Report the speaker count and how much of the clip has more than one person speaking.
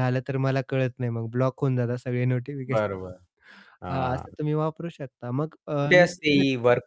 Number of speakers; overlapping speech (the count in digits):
2, about 7%